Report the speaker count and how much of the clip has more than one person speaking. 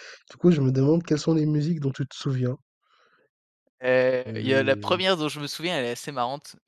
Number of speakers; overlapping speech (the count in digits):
2, no overlap